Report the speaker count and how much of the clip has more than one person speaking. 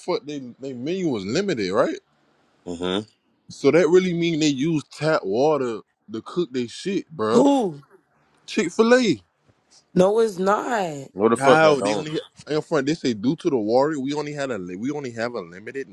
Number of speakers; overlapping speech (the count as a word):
three, about 5%